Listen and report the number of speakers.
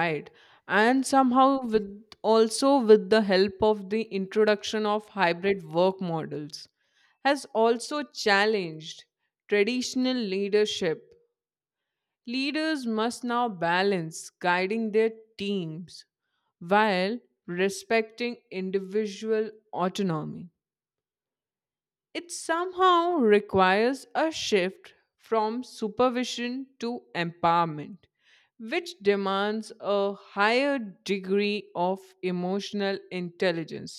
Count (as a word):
one